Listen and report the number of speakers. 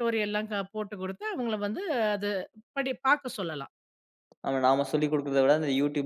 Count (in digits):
2